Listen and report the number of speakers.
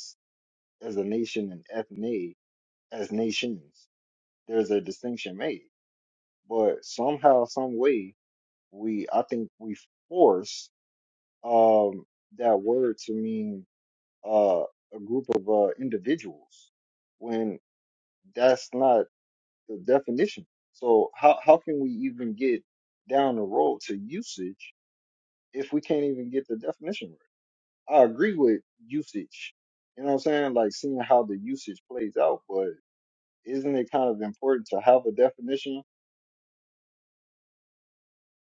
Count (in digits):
1